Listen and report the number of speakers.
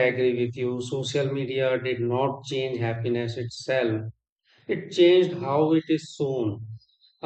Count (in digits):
1